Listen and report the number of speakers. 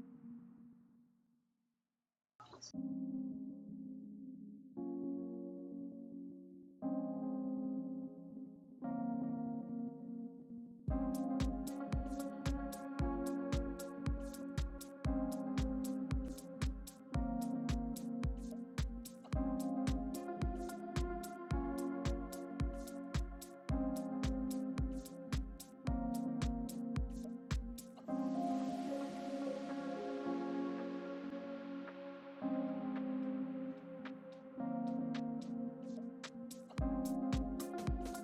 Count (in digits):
0